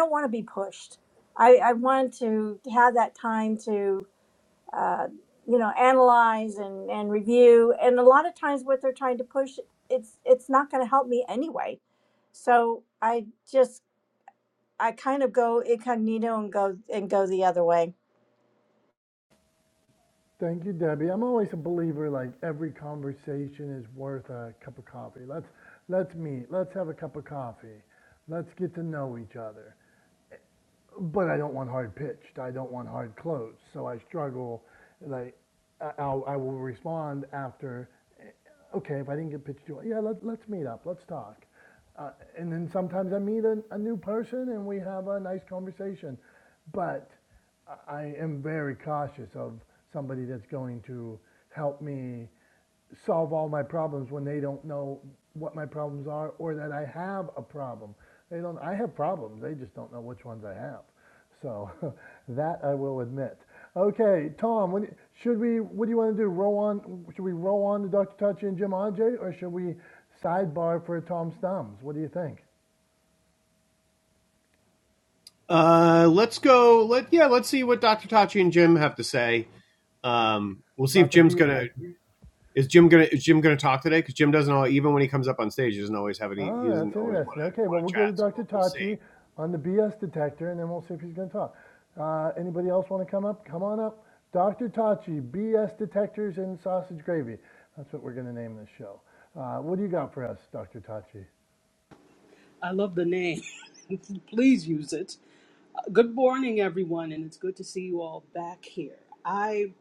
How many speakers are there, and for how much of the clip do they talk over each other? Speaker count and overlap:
4, about 3%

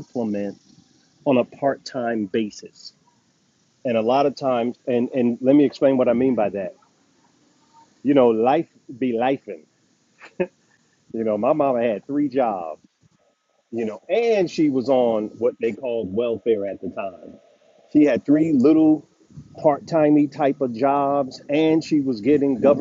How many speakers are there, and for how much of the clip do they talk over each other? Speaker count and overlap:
1, no overlap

